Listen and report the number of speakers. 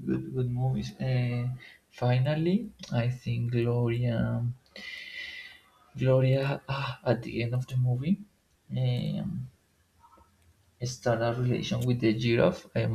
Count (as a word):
one